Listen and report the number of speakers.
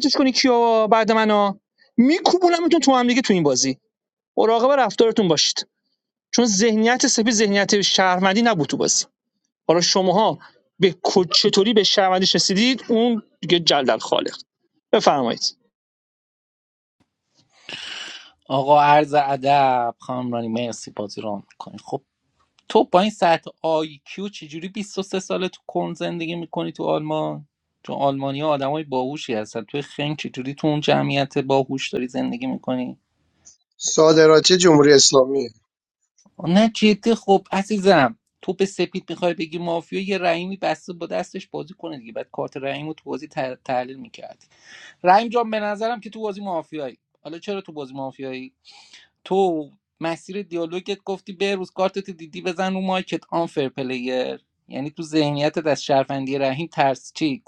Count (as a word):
three